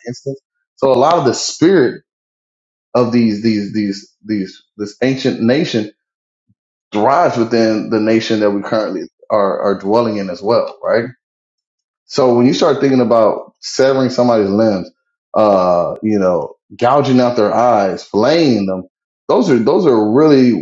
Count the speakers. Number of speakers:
1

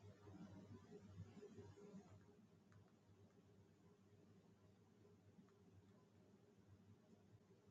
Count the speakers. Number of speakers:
0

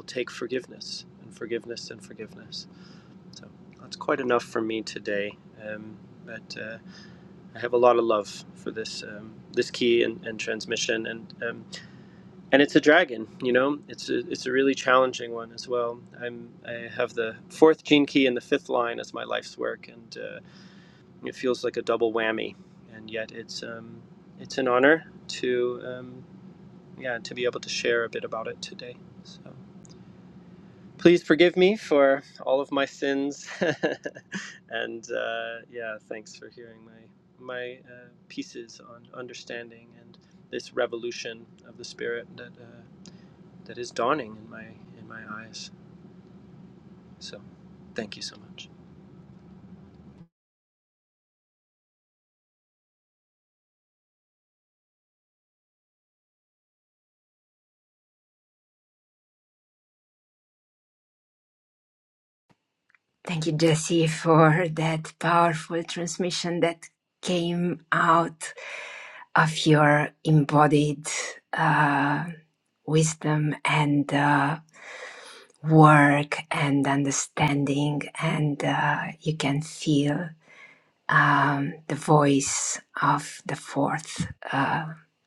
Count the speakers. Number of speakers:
2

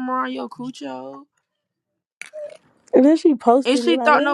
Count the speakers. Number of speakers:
2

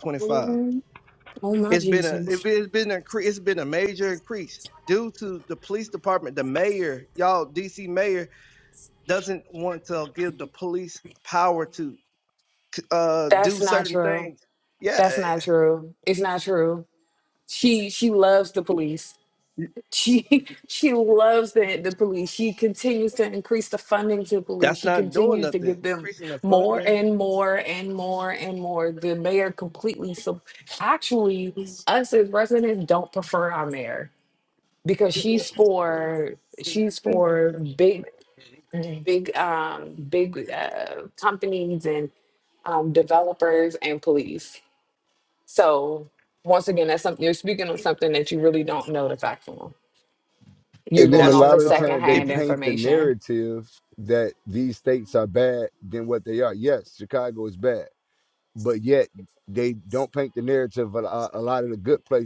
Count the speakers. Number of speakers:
3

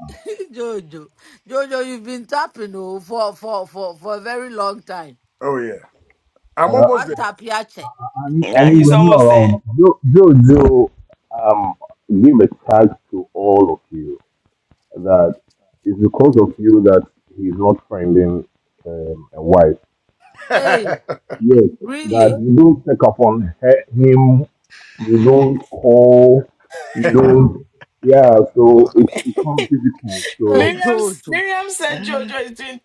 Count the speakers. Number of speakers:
4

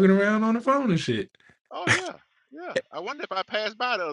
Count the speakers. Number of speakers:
2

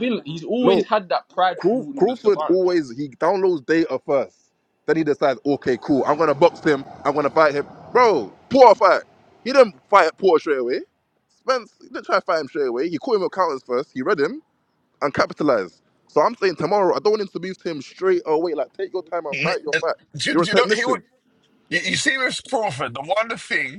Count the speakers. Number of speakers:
3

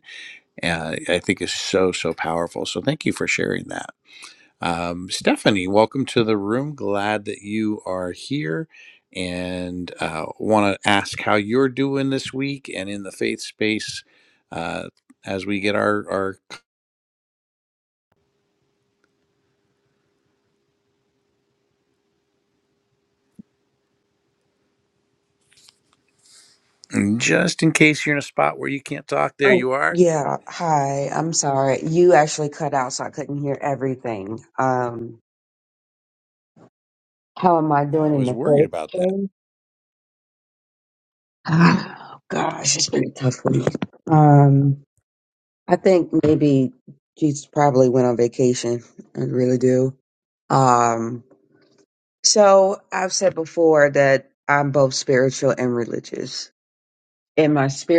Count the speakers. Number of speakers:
2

